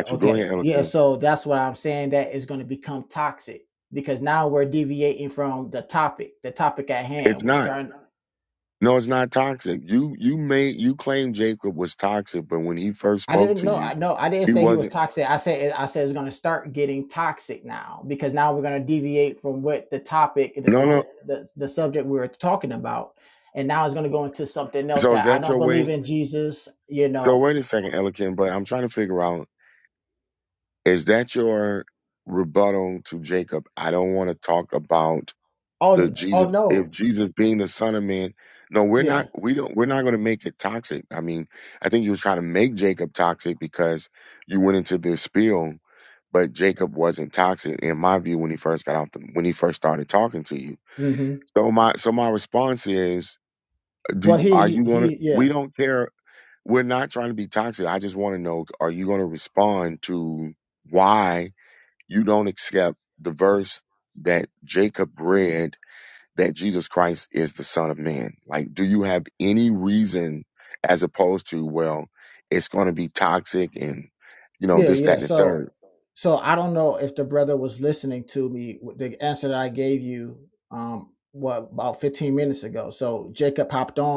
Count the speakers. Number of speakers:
two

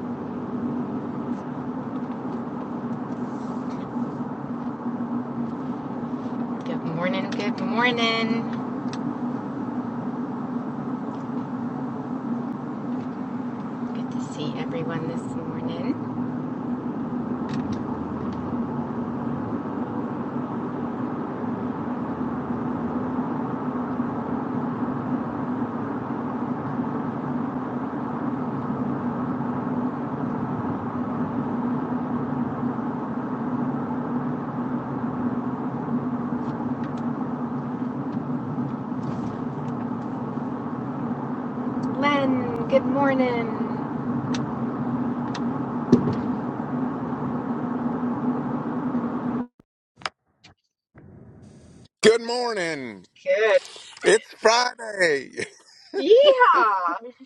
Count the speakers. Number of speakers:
two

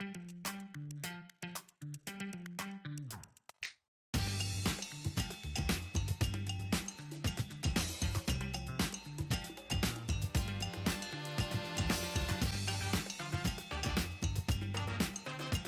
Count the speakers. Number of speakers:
zero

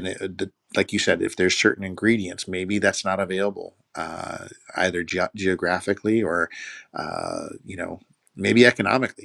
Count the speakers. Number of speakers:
one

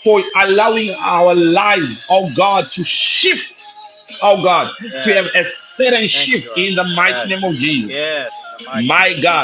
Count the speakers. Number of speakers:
two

